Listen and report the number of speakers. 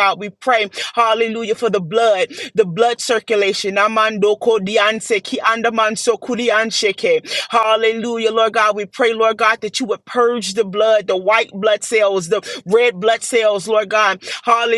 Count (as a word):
one